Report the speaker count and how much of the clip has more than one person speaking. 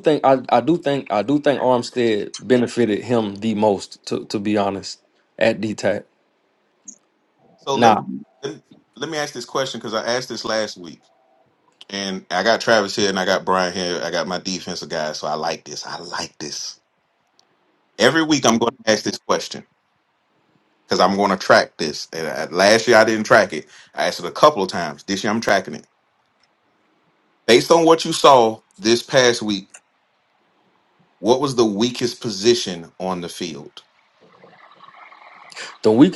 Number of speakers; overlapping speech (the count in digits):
2, about 1%